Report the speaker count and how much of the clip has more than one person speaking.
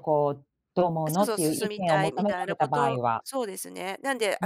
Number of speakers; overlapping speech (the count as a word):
two, about 44%